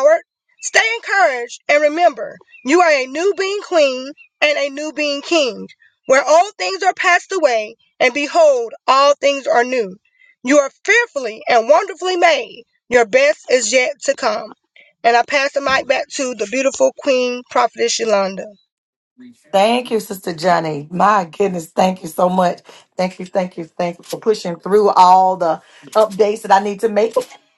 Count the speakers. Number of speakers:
2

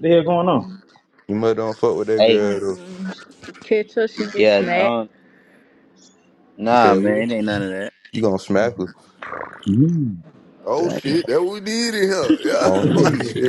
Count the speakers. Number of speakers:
5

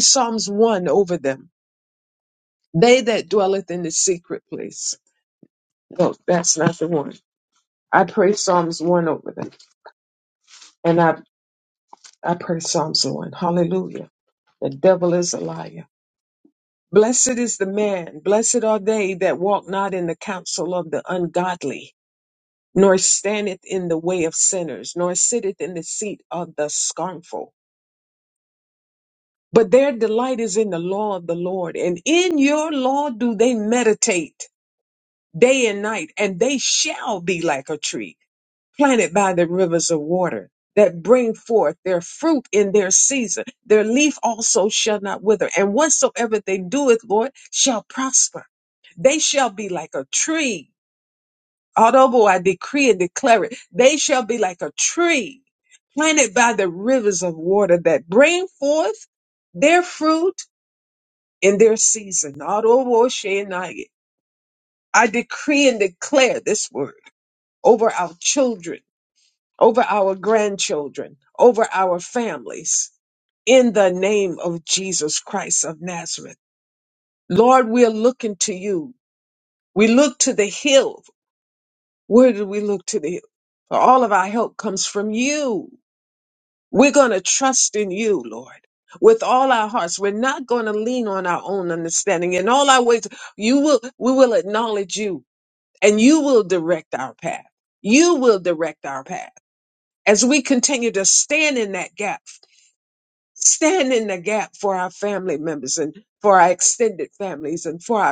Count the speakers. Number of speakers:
1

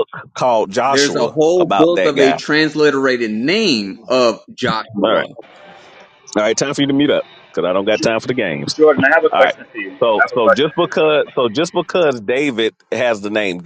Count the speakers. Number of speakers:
3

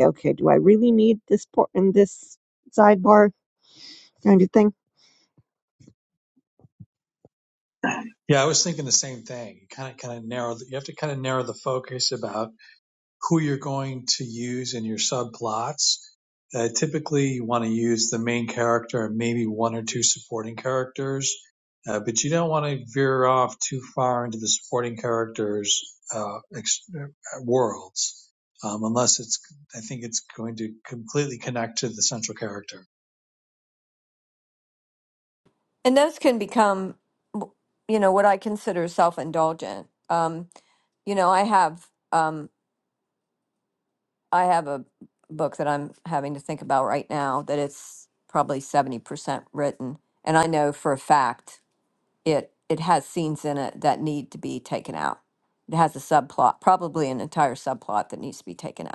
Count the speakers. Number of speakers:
3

